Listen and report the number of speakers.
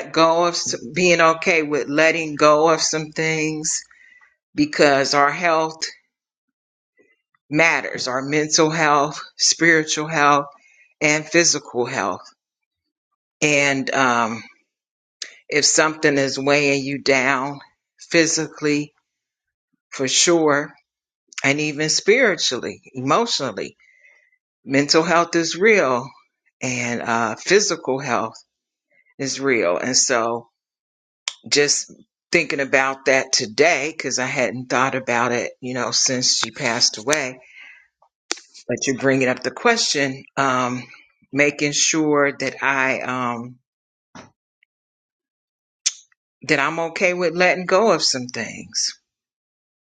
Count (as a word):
one